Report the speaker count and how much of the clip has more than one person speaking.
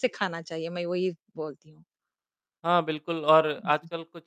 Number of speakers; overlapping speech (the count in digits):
2, under 1%